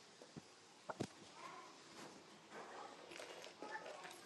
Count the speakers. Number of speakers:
zero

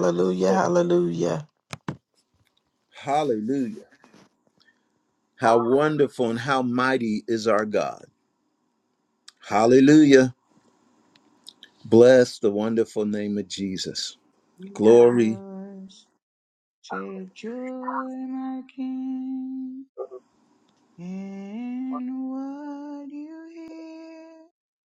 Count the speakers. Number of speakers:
three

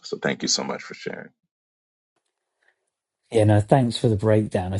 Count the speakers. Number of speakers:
two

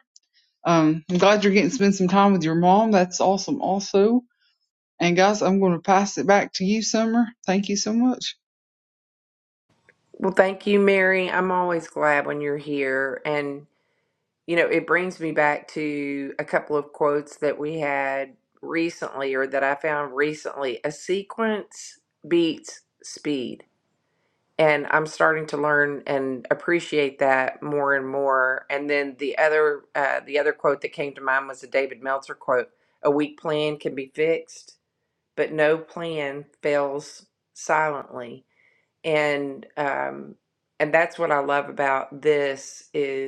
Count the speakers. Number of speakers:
two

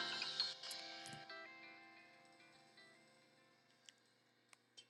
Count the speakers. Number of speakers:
zero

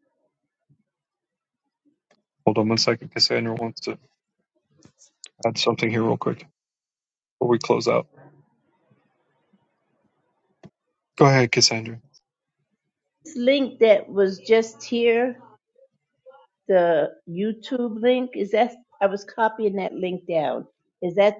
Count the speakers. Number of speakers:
two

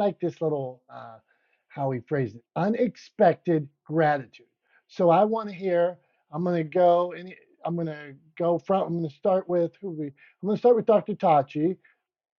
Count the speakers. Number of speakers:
one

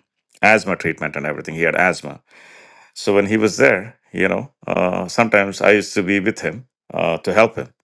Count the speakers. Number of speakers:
one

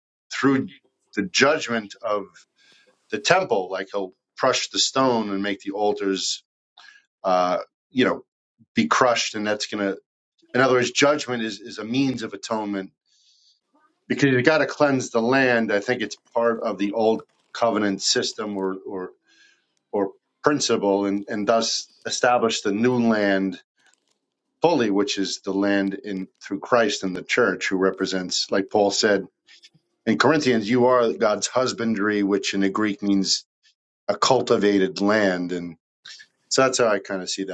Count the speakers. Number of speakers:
one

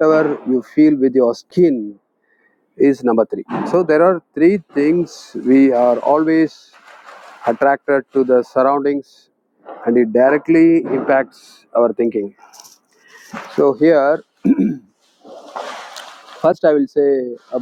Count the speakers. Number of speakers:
one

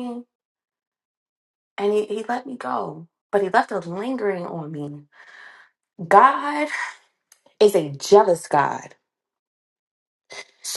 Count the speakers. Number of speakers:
one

